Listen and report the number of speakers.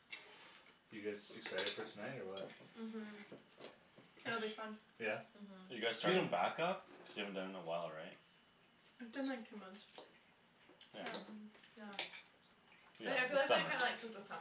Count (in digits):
4